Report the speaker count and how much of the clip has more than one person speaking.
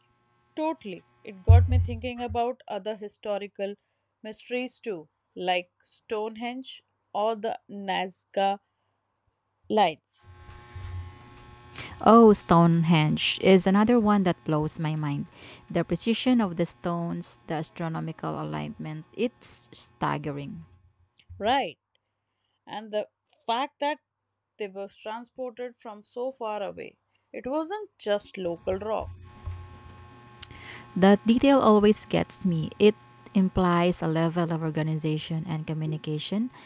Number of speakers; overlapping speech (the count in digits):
2, no overlap